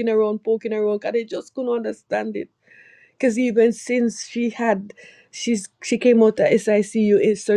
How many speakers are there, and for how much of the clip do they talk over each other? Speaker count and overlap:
1, no overlap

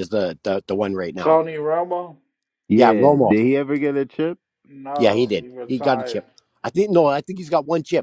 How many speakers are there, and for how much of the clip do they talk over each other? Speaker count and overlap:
3, about 25%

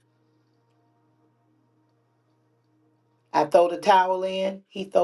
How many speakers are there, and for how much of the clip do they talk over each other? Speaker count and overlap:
1, no overlap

